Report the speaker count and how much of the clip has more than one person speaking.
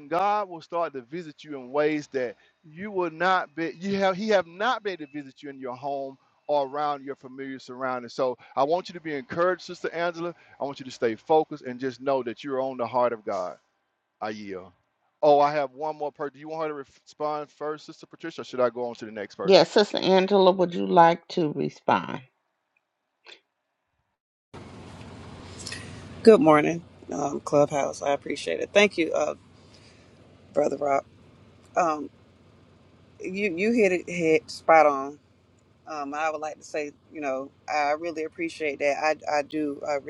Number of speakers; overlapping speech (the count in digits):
3, under 1%